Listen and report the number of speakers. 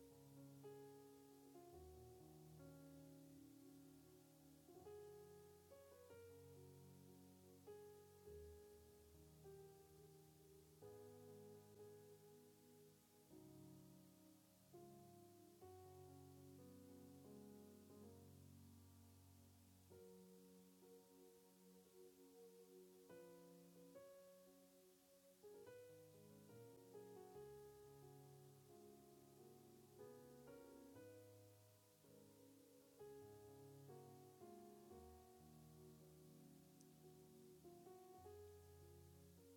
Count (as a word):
zero